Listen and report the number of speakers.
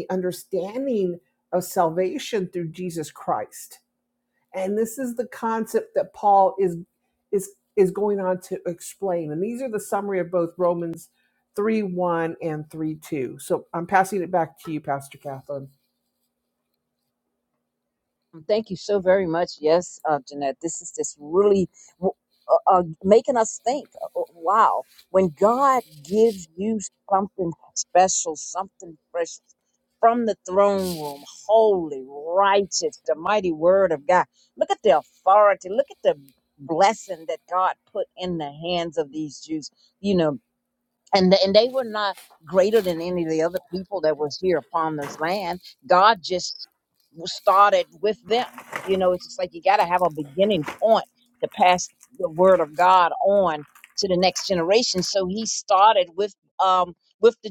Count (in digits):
2